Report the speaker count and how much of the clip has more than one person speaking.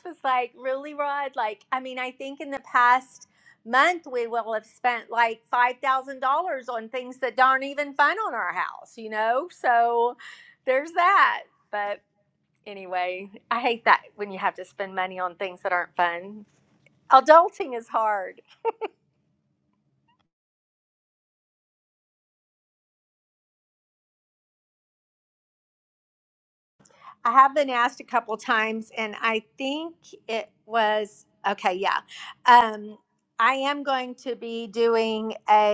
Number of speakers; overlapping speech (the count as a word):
one, no overlap